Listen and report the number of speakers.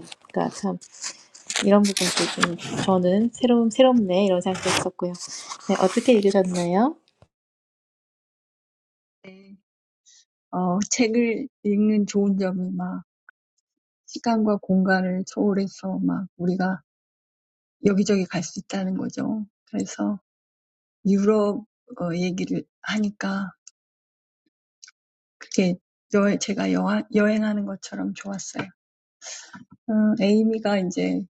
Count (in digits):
2